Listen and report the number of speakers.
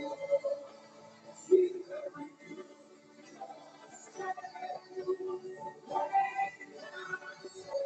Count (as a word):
zero